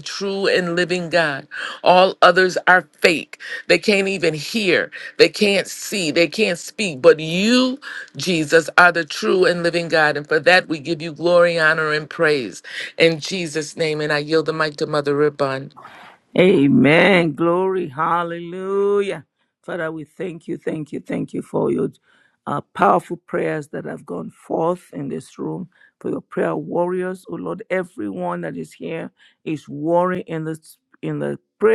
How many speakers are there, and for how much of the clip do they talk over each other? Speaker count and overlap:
2, no overlap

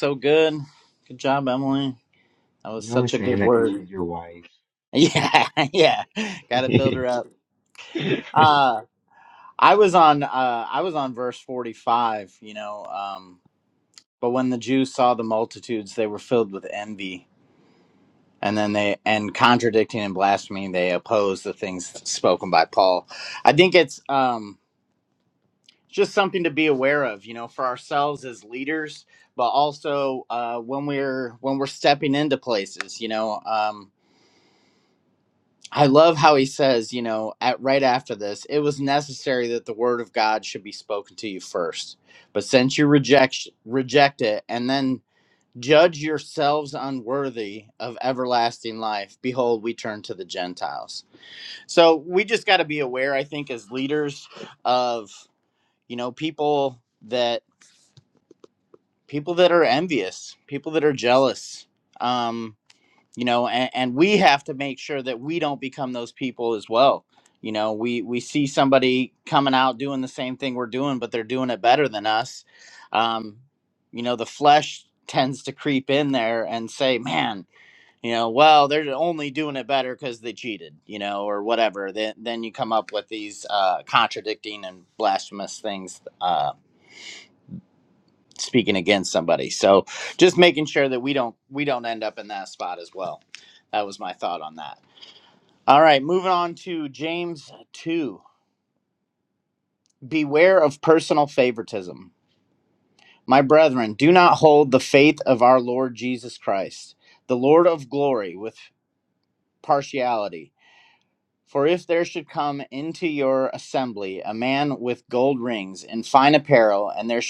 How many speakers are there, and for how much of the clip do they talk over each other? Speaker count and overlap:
2, about 1%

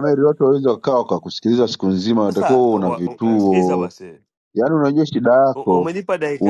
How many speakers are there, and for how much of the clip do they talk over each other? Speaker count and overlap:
2, about 31%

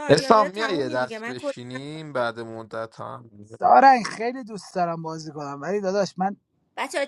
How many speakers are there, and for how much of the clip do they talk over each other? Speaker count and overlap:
3, about 24%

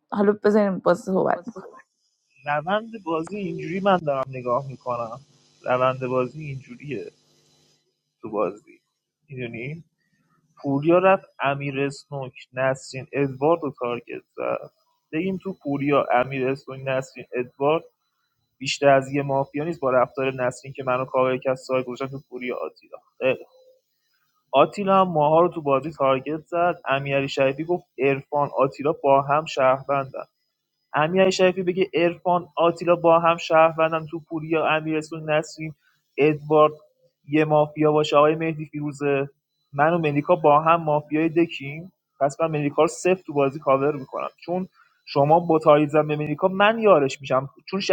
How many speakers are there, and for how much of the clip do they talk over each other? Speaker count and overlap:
2, no overlap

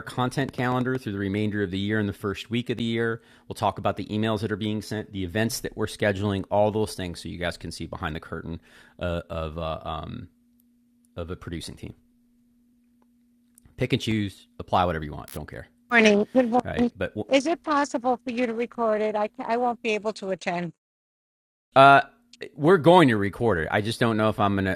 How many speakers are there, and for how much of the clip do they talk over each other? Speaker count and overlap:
2, about 1%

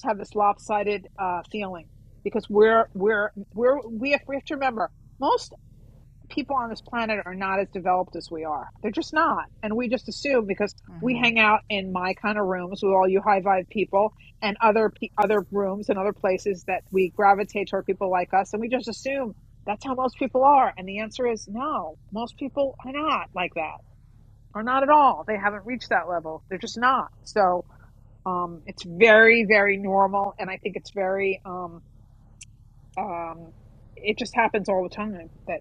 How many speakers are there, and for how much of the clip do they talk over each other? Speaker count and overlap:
1, no overlap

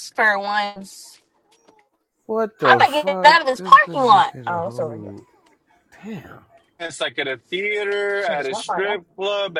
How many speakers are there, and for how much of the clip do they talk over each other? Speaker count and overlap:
3, about 32%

